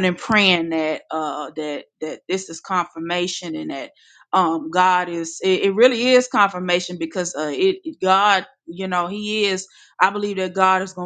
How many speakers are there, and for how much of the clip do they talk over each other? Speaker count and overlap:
1, no overlap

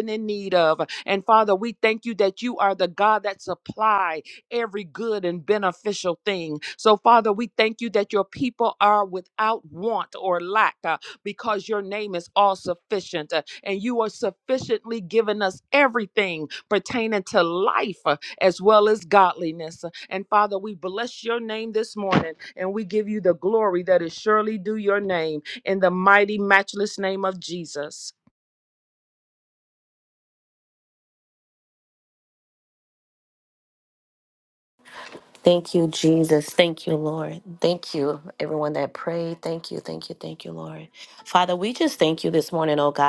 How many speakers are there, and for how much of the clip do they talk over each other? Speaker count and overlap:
2, no overlap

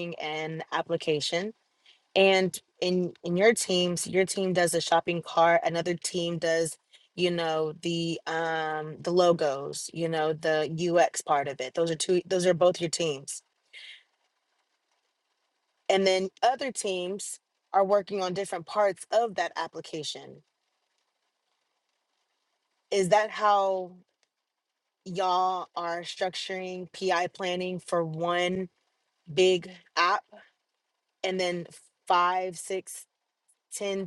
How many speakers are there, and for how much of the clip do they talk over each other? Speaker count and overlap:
1, no overlap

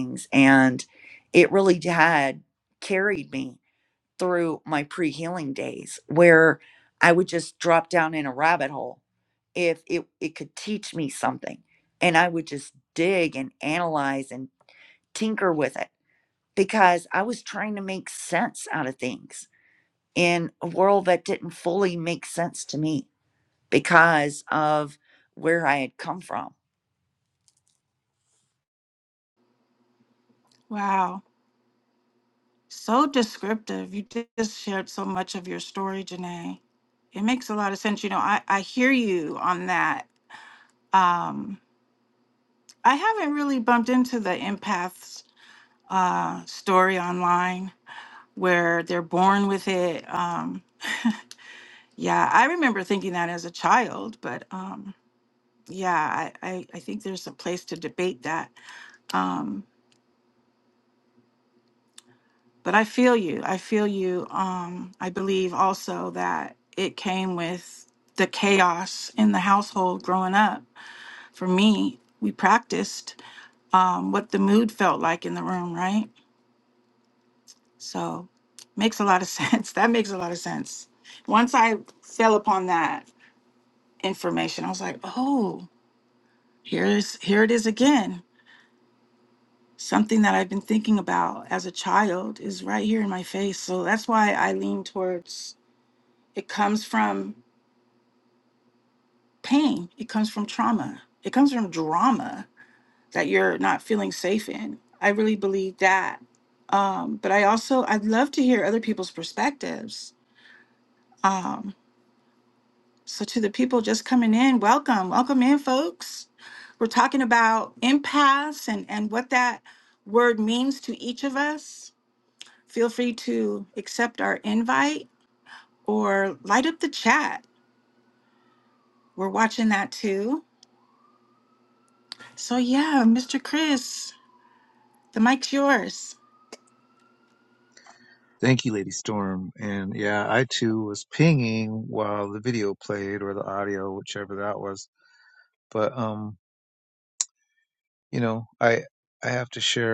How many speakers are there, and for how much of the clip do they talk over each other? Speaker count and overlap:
3, no overlap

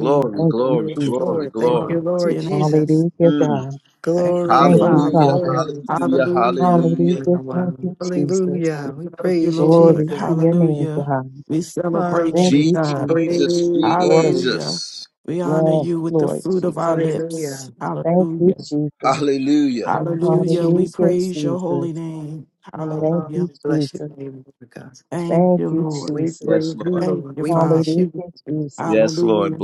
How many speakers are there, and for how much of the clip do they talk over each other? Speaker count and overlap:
4, about 74%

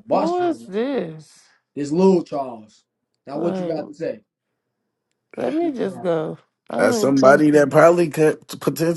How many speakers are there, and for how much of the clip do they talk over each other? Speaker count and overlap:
3, about 34%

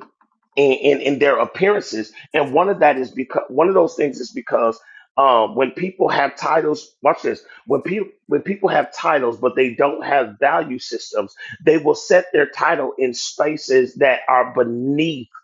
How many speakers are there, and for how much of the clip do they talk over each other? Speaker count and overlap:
1, no overlap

